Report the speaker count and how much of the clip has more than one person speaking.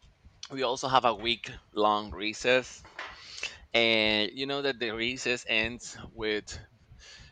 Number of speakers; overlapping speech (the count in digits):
1, no overlap